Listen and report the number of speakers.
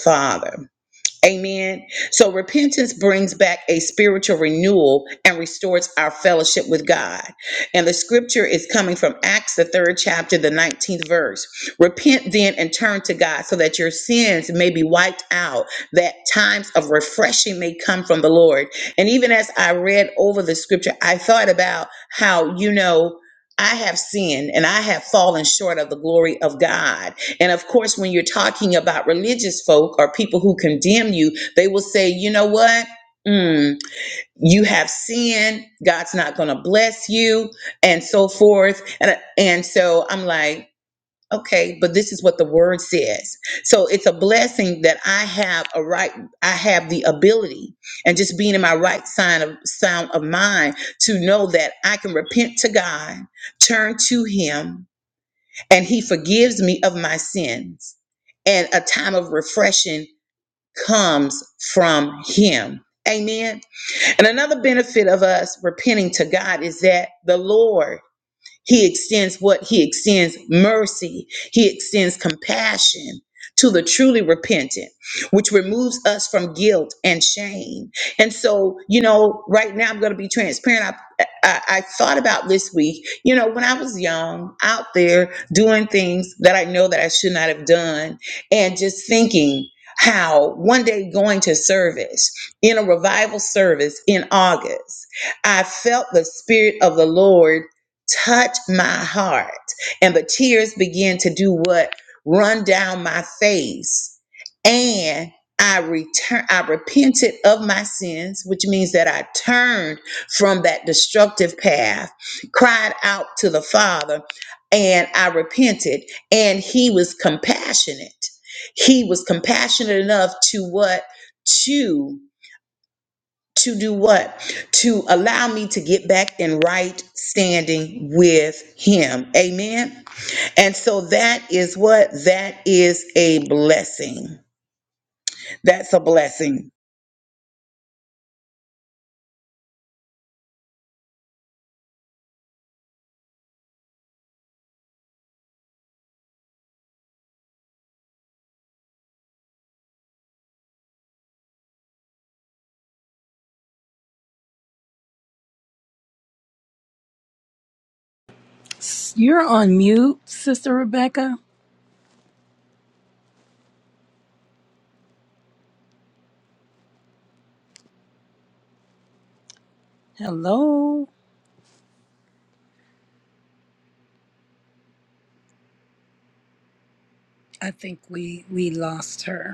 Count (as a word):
two